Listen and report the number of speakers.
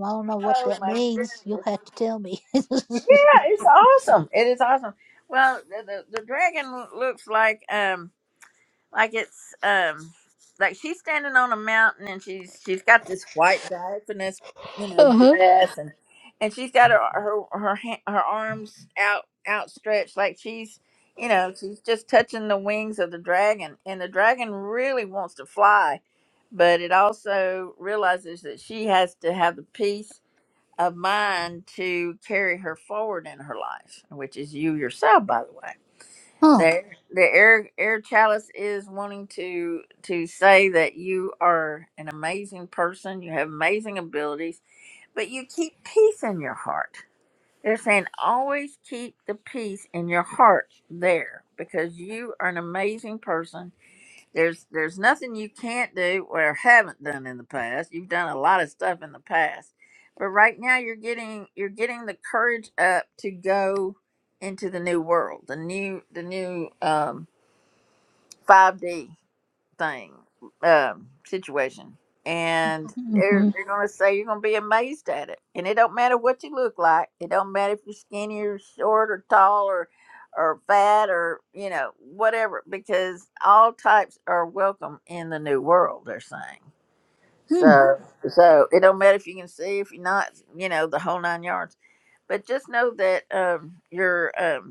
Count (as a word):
two